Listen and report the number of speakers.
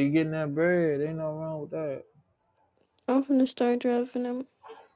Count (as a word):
two